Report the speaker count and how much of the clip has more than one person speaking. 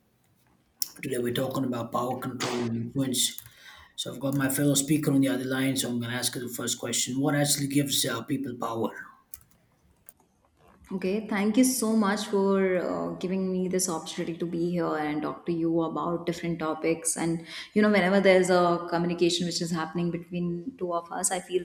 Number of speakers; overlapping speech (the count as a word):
two, no overlap